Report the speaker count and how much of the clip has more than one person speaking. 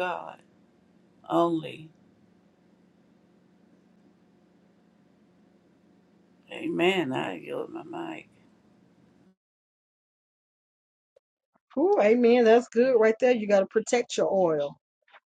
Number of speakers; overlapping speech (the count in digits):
2, no overlap